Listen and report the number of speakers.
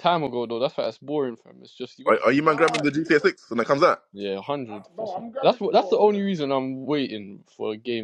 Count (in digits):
3